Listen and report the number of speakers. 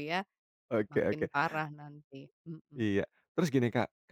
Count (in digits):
2